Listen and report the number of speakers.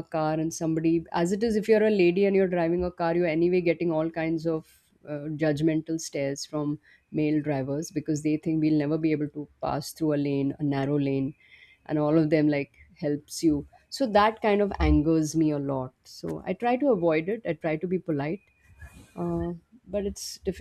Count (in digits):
1